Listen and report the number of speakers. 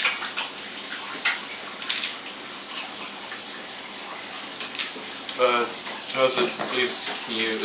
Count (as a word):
one